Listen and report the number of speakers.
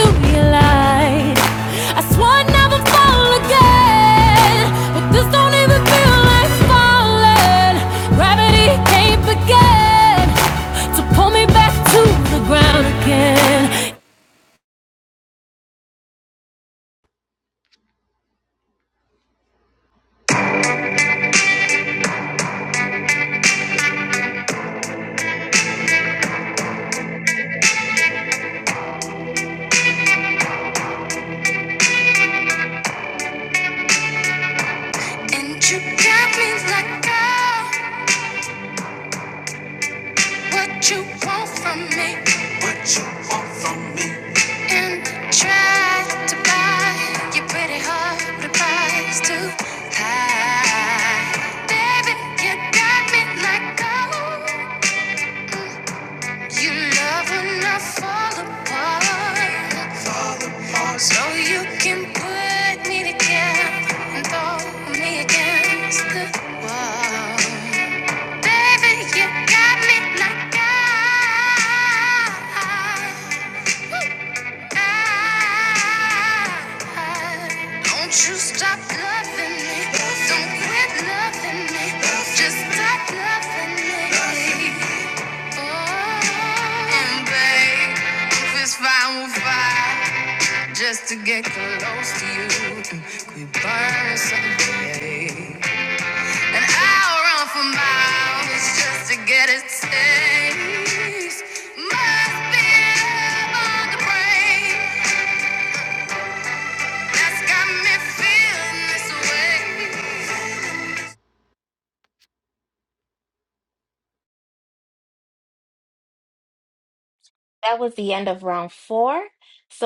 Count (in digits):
3